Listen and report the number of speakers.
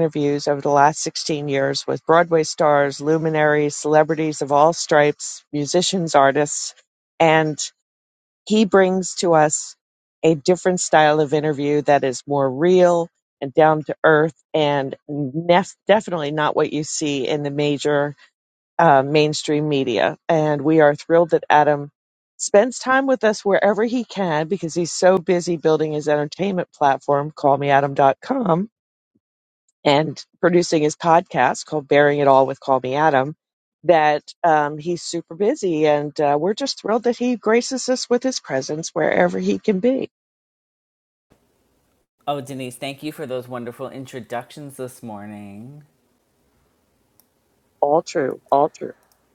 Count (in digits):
2